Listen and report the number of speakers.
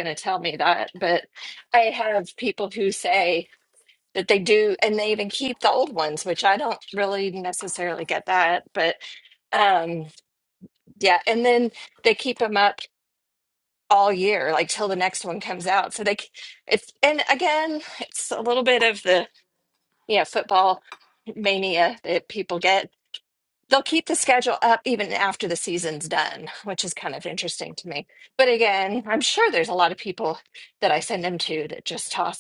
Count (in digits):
1